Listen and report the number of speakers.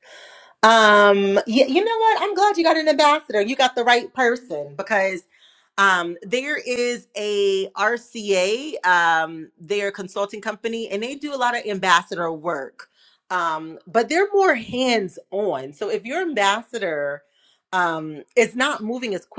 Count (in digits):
1